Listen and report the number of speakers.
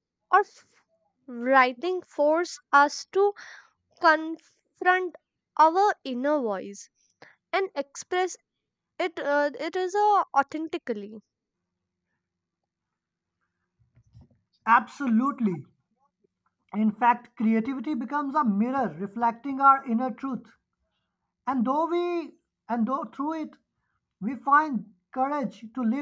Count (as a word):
two